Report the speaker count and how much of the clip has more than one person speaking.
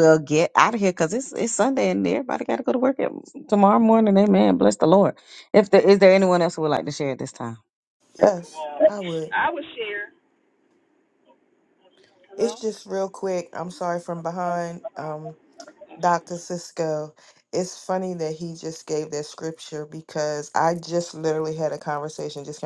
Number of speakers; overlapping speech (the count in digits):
3, about 1%